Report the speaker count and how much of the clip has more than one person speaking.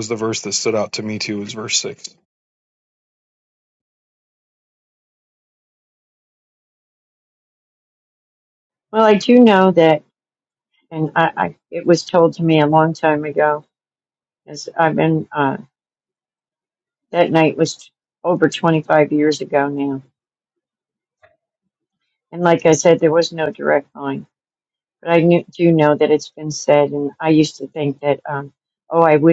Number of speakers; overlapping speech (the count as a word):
two, no overlap